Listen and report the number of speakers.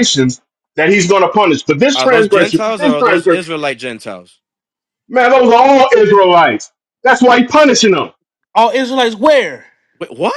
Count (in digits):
3